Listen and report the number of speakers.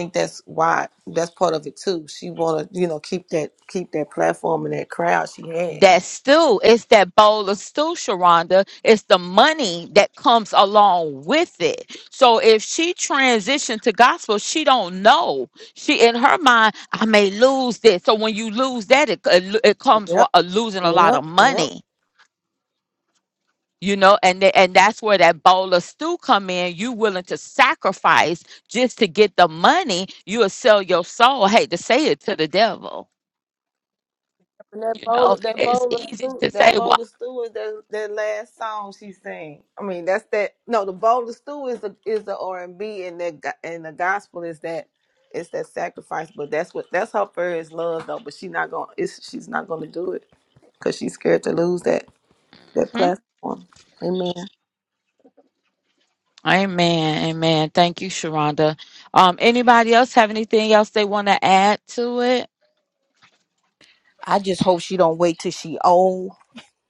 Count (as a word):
three